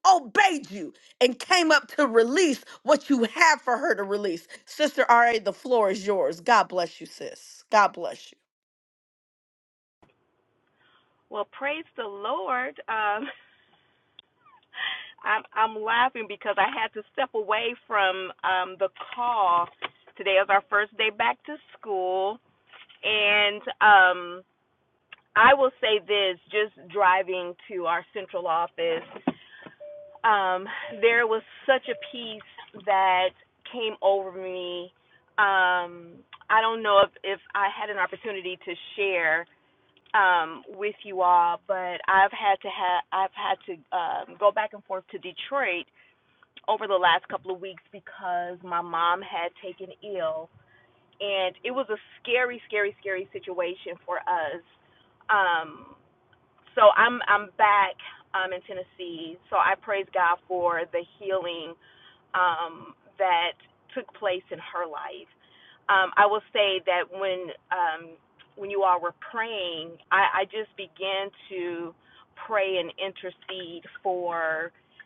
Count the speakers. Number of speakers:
2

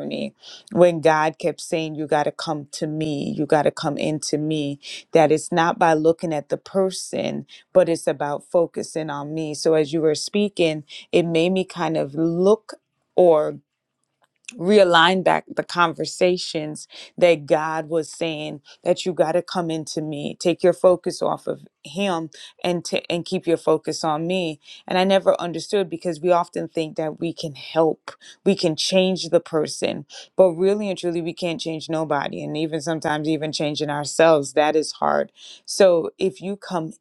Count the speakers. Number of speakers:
1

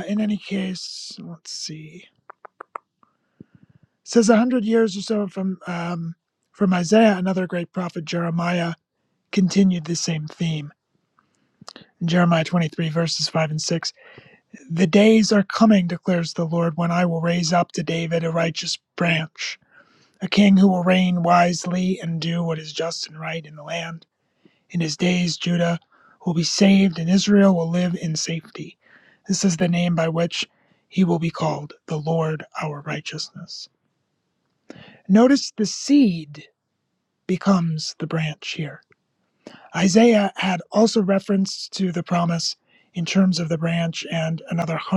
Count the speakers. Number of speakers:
1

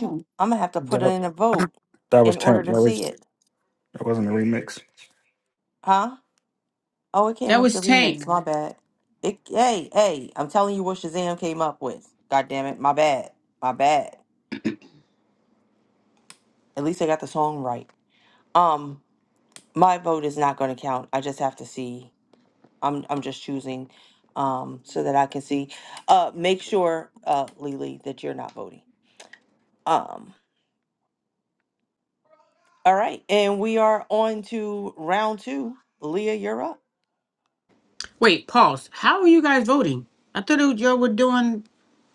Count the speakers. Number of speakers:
3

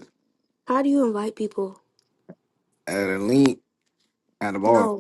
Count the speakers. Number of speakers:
2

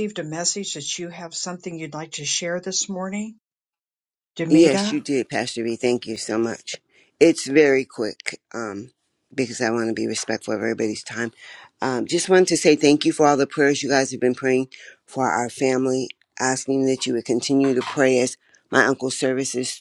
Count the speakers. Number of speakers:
2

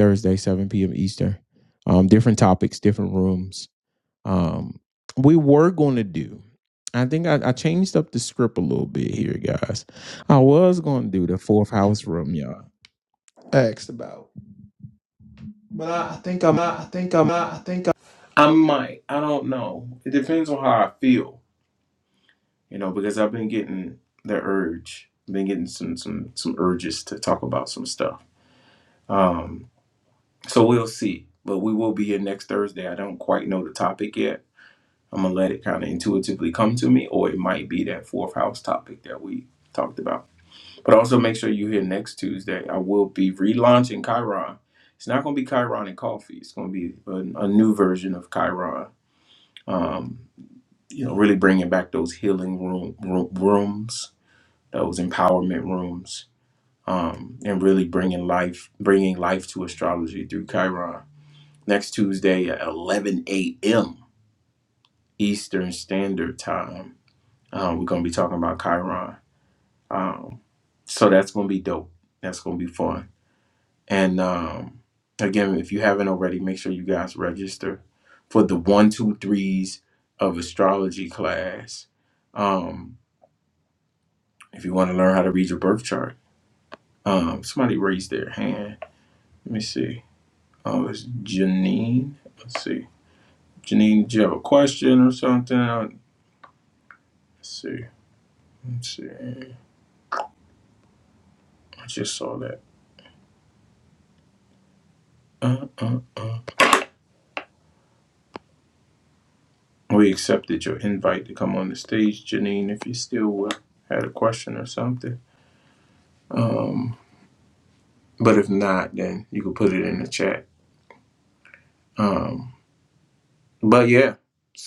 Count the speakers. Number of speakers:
1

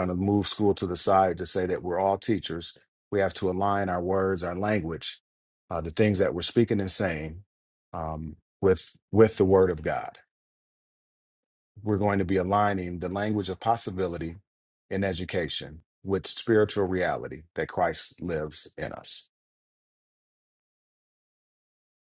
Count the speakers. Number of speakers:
1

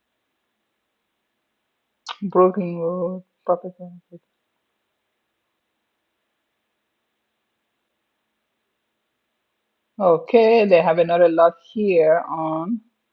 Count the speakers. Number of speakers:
1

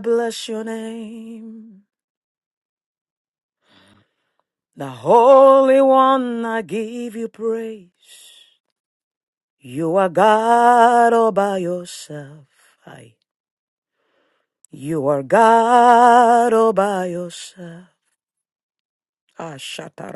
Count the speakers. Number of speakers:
1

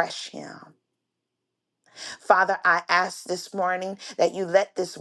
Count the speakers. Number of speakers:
1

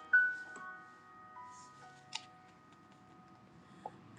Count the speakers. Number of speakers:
0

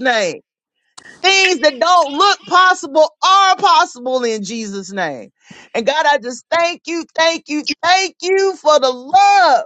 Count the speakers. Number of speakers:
1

